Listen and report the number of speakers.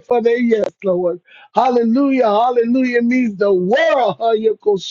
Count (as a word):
one